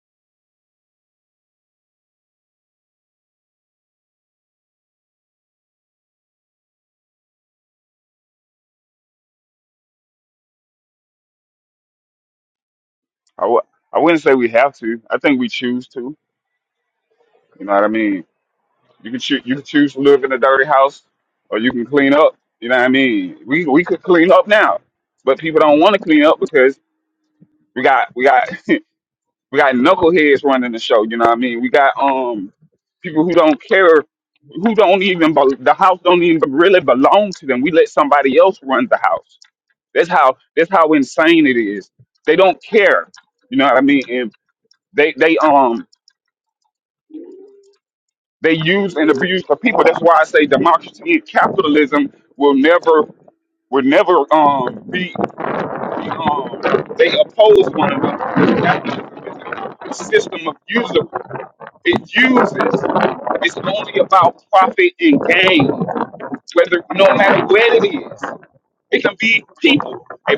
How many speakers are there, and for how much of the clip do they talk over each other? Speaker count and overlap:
1, no overlap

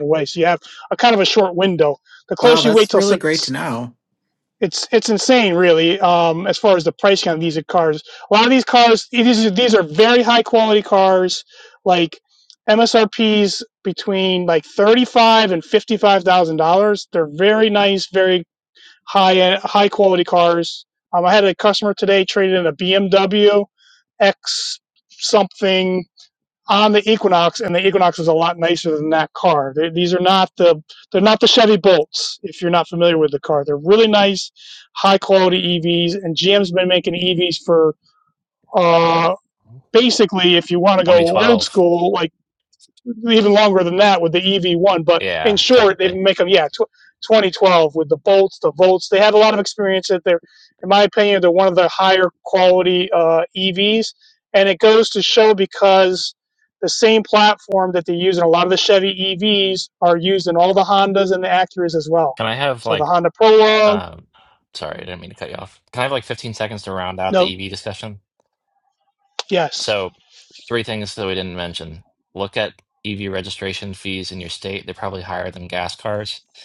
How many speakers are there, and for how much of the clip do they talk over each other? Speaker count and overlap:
3, about 4%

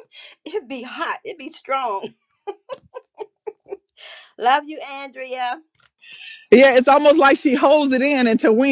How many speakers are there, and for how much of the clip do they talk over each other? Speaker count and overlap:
2, no overlap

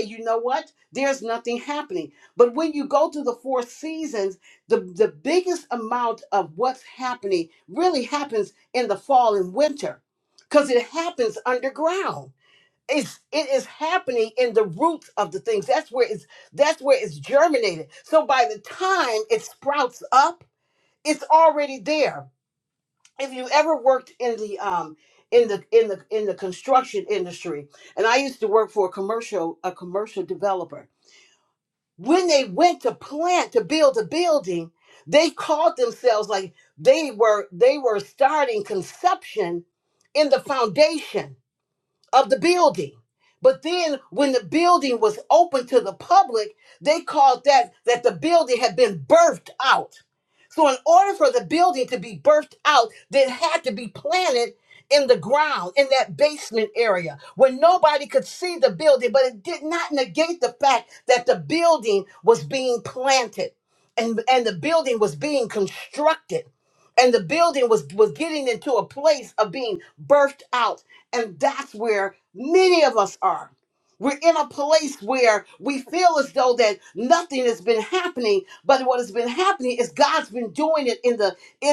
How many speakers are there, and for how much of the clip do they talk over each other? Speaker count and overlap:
1, no overlap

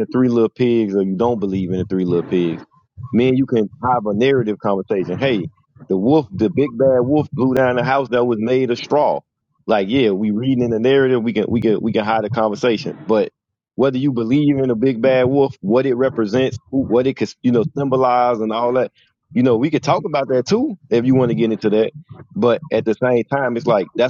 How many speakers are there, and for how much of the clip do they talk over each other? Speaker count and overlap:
1, no overlap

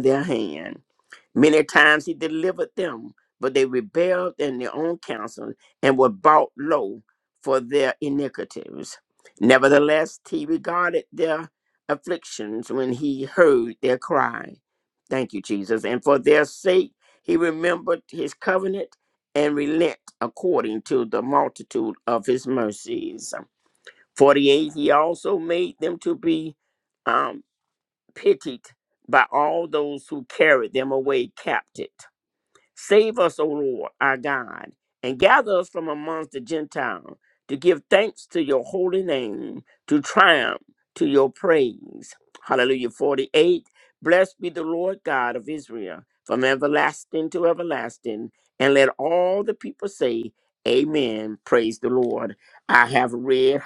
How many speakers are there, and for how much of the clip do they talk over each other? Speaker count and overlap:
1, no overlap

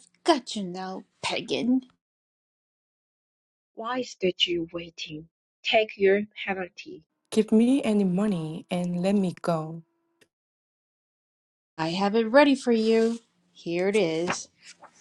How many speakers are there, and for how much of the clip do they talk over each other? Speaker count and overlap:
3, no overlap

